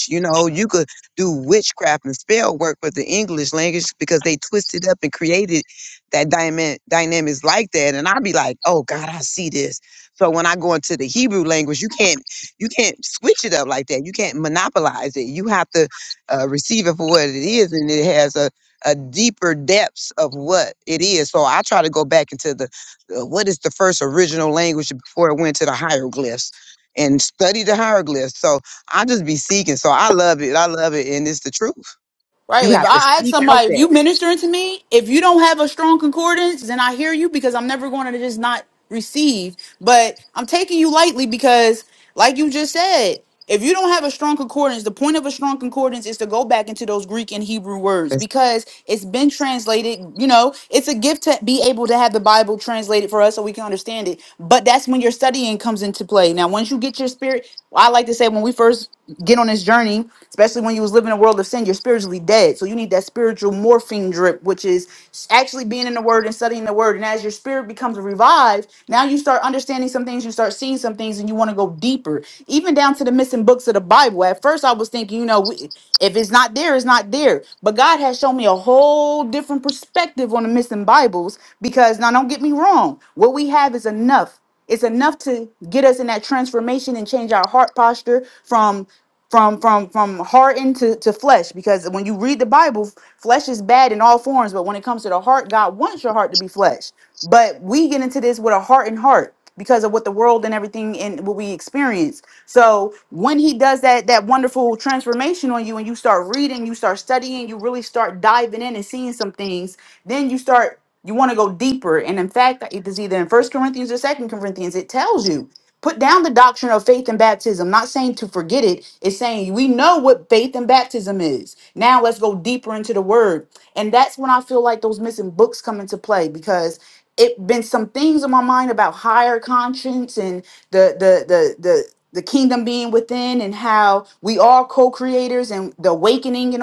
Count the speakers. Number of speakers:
2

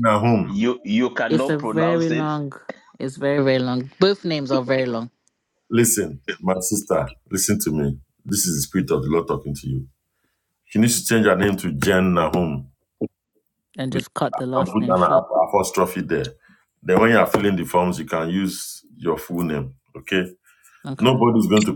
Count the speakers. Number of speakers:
3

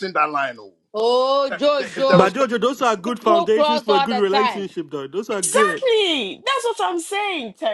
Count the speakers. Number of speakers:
4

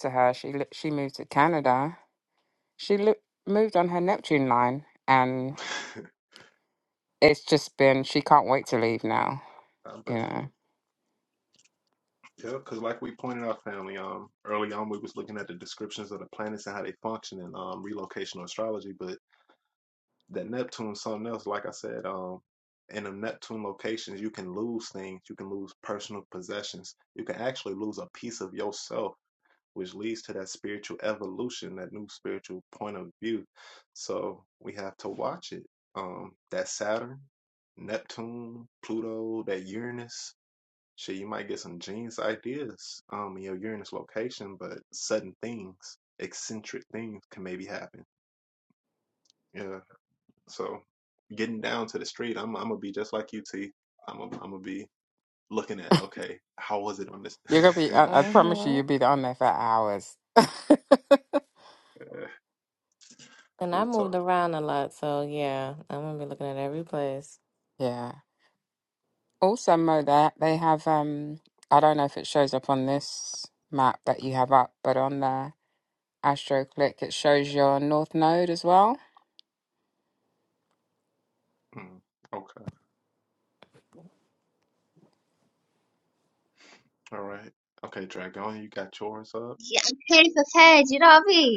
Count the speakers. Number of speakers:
4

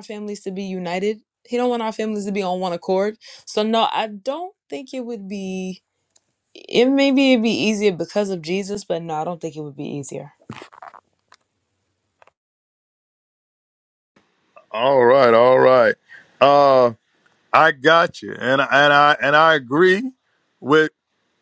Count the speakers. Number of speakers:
2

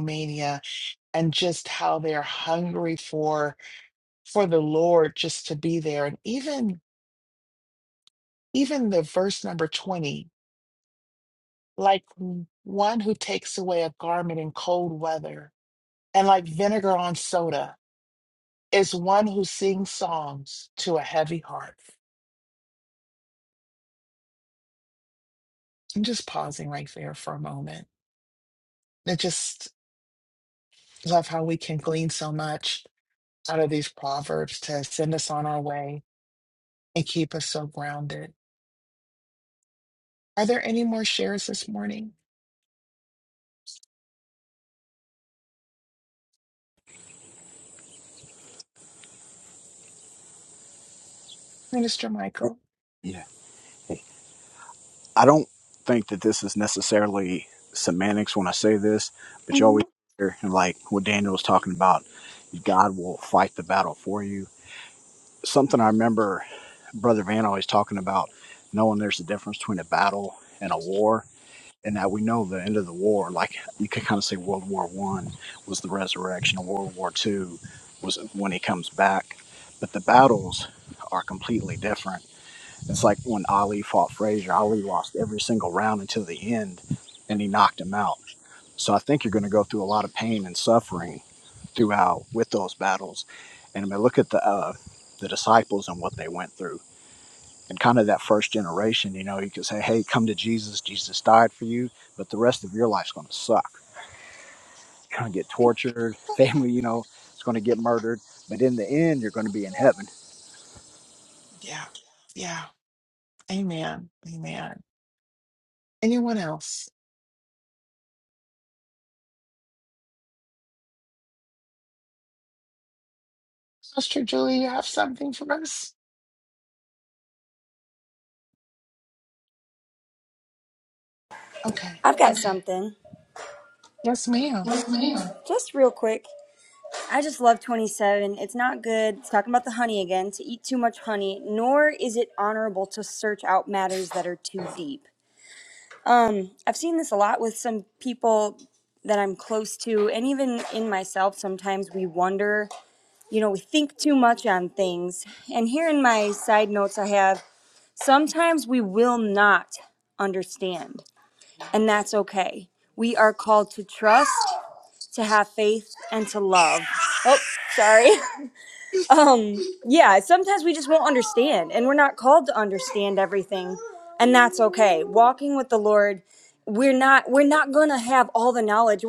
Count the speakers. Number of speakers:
3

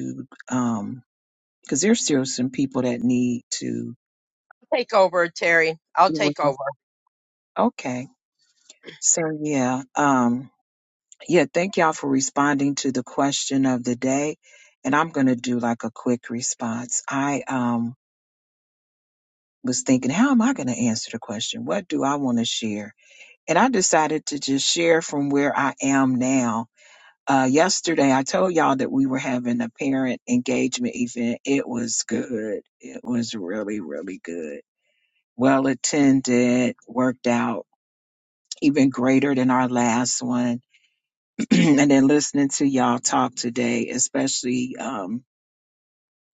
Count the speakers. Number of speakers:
2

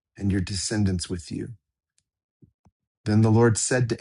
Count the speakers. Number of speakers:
1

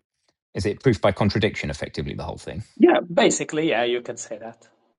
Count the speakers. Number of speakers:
2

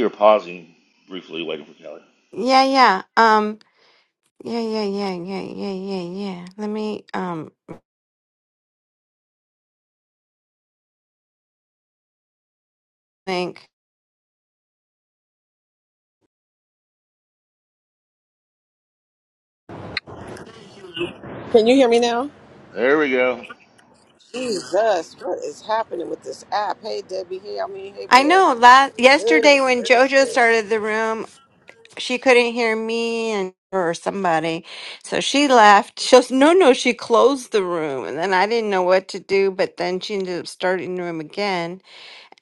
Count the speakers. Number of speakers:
3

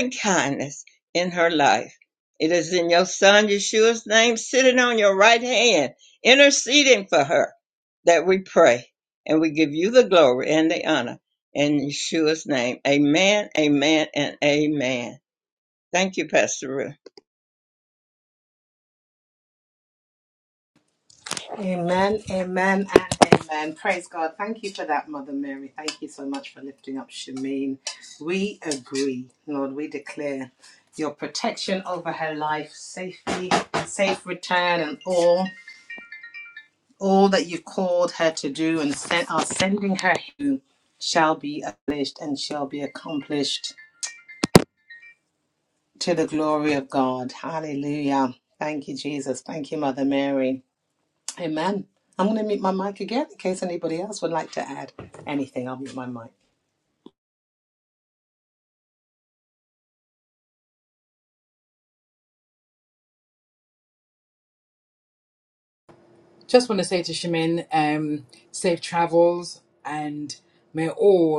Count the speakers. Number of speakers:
3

